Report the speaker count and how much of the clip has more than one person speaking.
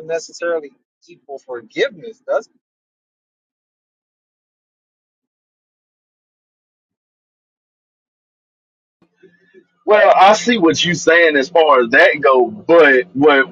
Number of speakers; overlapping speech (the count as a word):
two, no overlap